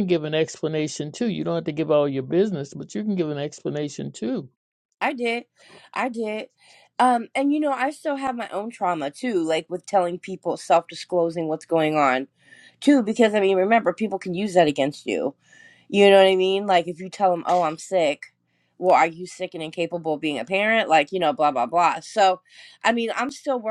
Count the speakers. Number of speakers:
2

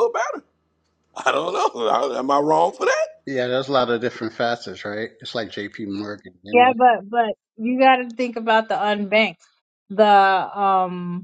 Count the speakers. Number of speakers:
3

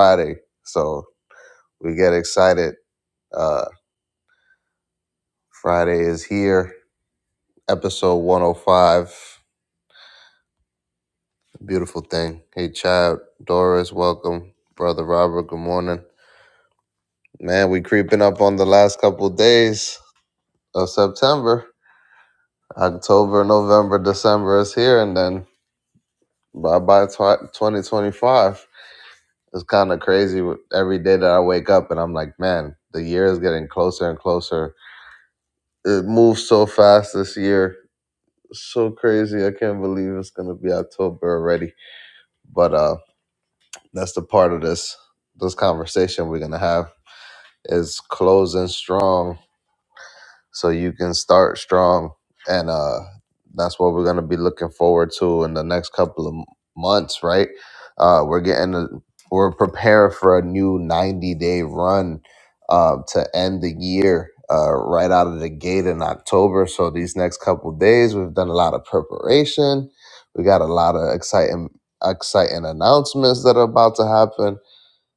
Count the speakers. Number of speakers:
1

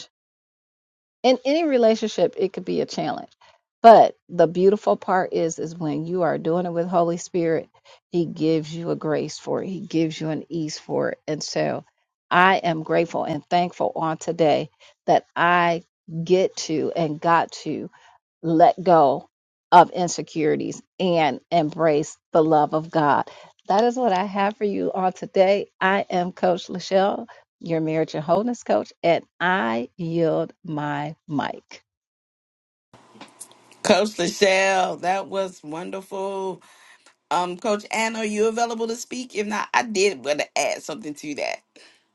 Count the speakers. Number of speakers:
2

